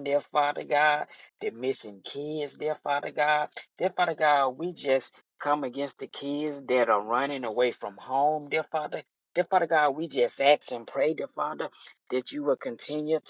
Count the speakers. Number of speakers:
one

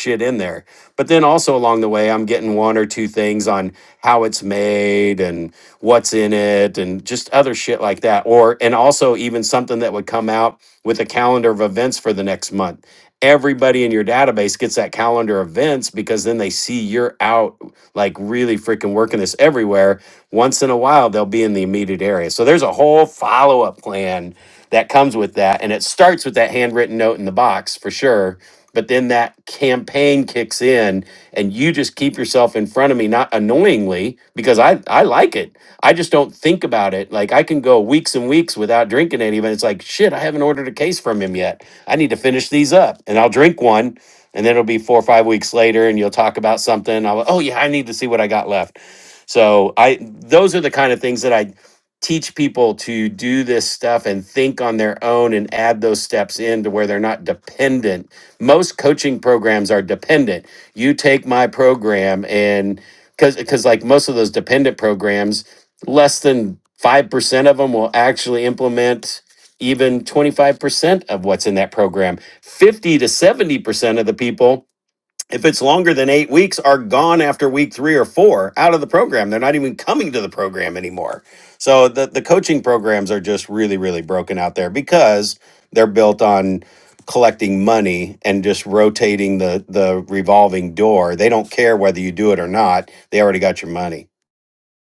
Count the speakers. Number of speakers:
one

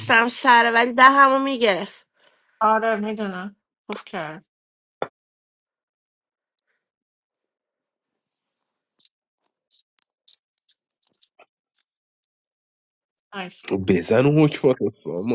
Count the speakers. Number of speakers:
three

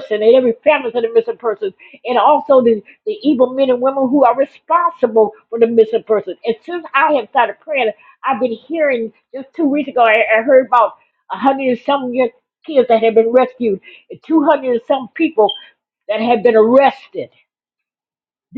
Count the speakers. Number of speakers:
one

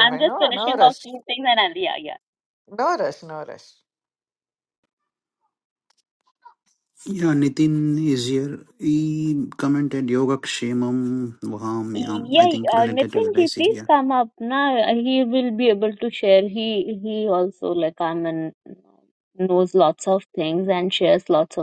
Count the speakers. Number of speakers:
three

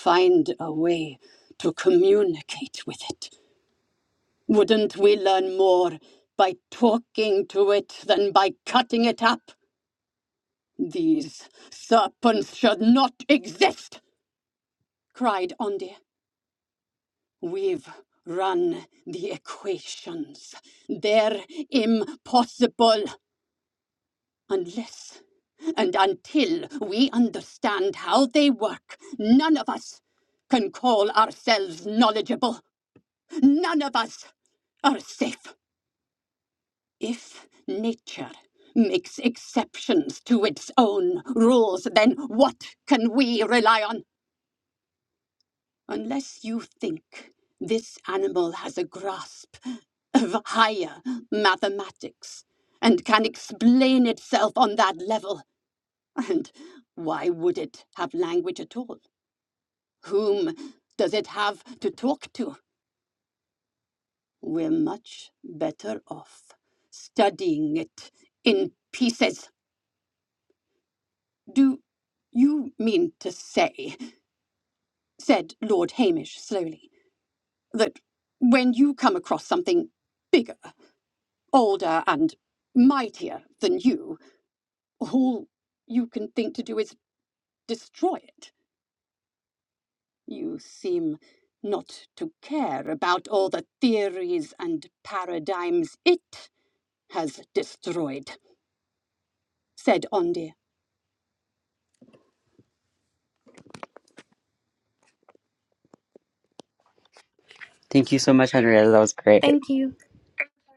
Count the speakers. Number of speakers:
two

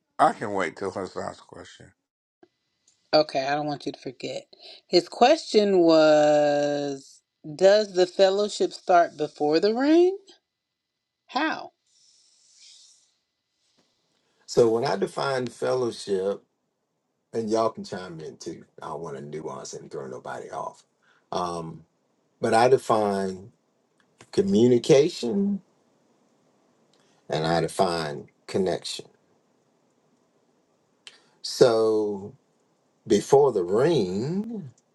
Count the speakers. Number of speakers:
three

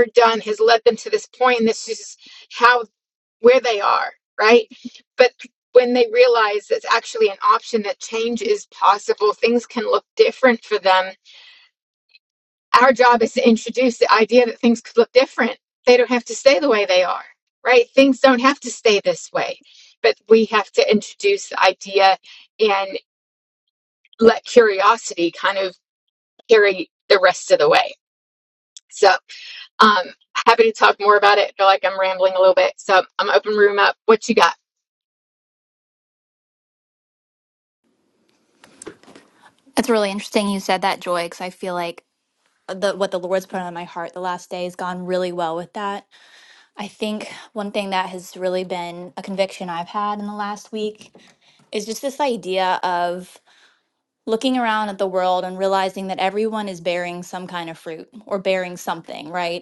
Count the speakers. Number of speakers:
two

